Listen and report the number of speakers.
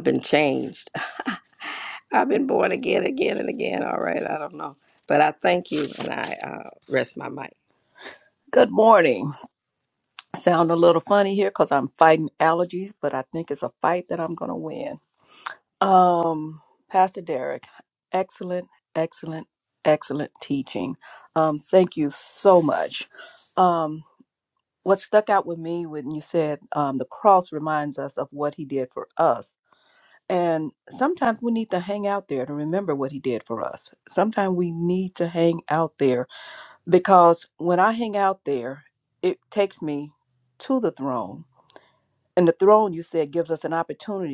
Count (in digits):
2